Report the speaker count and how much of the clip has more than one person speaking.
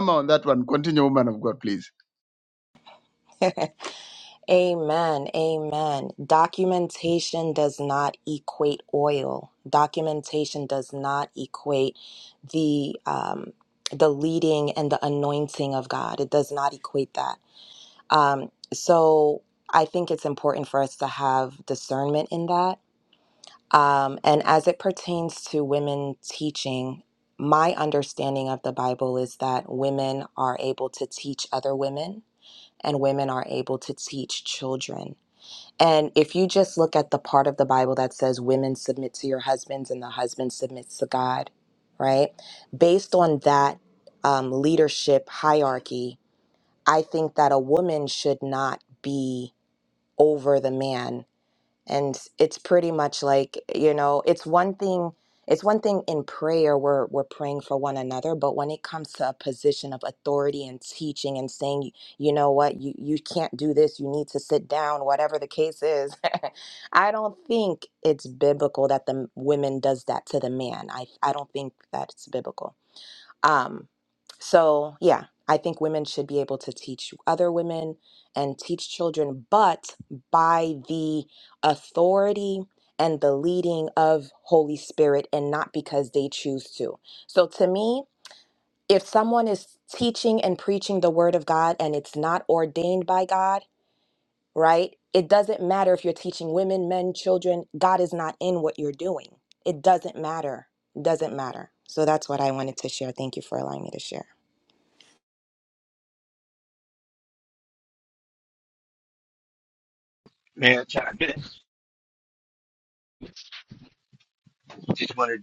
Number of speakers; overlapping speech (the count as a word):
three, no overlap